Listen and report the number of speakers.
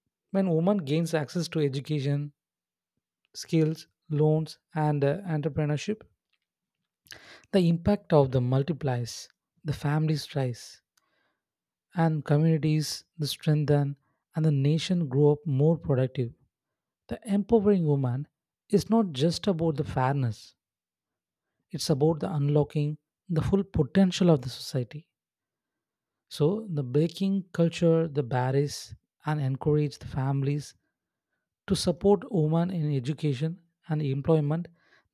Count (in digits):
1